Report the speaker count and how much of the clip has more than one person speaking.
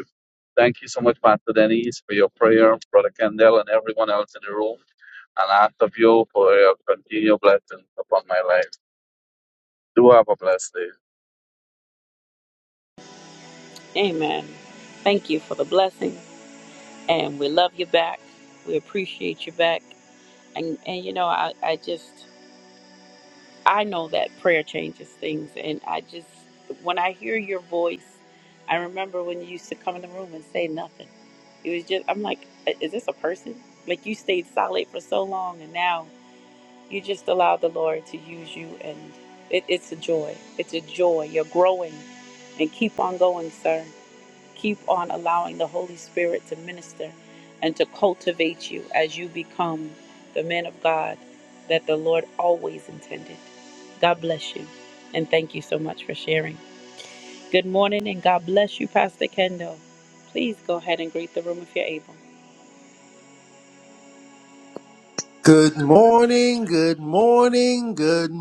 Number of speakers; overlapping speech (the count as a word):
three, no overlap